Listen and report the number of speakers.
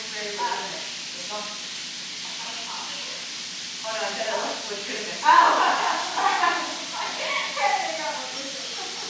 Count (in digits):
2